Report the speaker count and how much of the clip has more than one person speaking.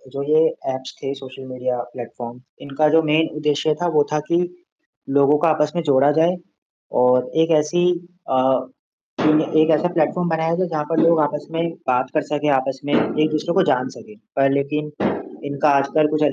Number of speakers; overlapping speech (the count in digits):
1, no overlap